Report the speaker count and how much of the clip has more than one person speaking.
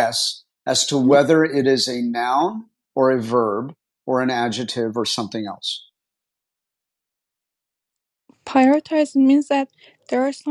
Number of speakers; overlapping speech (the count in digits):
2, no overlap